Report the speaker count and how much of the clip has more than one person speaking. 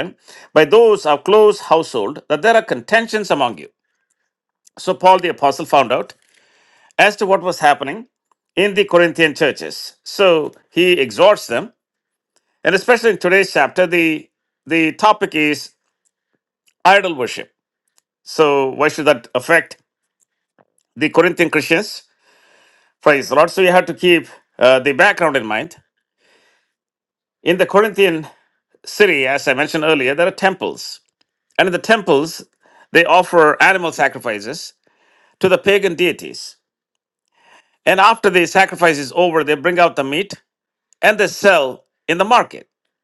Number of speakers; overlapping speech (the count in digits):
1, no overlap